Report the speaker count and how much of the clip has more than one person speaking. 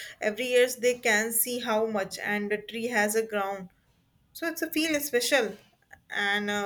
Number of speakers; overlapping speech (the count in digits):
1, no overlap